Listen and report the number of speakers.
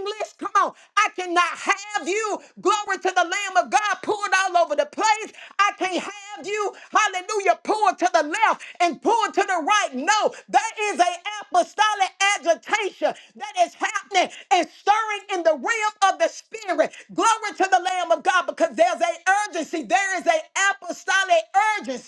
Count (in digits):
1